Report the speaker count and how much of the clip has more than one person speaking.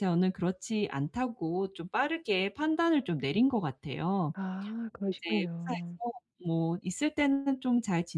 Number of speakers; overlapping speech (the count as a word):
two, about 10%